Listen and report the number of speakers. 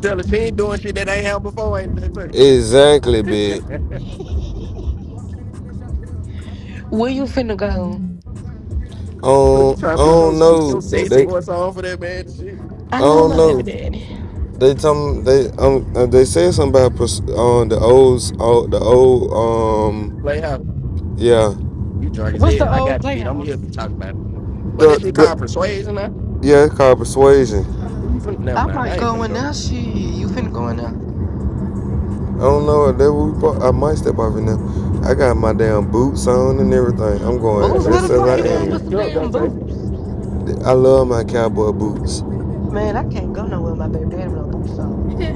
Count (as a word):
three